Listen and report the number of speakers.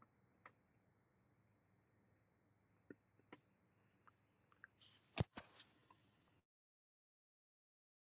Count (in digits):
0